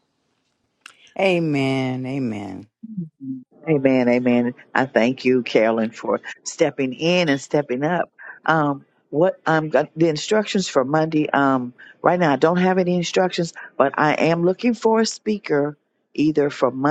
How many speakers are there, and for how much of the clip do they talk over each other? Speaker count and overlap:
two, no overlap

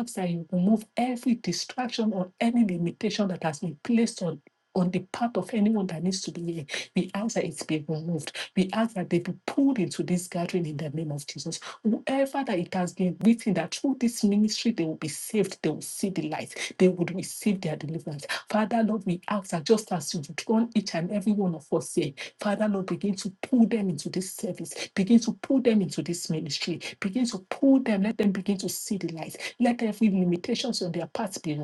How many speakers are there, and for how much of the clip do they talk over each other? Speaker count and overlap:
one, no overlap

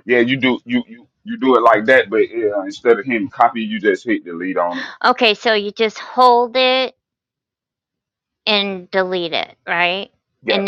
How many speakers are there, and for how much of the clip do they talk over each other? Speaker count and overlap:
two, about 1%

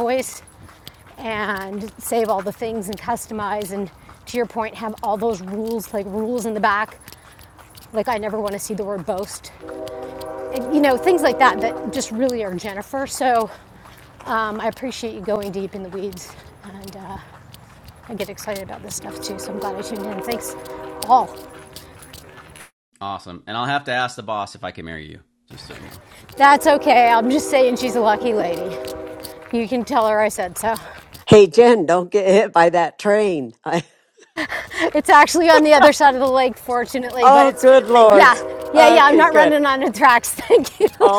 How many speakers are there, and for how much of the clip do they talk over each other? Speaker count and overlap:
three, about 4%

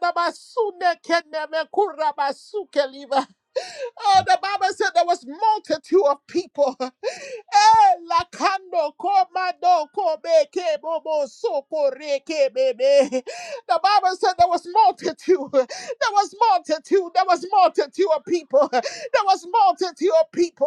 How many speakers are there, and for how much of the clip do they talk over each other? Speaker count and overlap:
one, no overlap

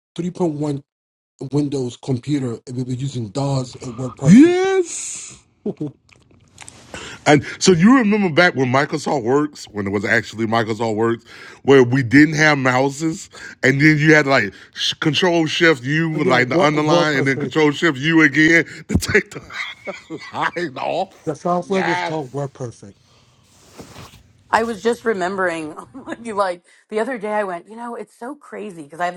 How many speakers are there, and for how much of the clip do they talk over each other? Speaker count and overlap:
three, about 7%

